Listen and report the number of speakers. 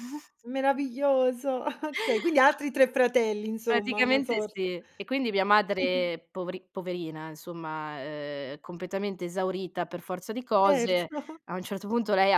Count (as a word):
two